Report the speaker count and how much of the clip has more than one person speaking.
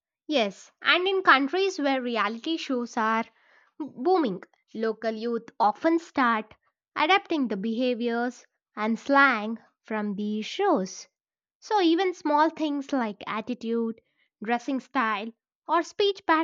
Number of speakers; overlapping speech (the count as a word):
one, no overlap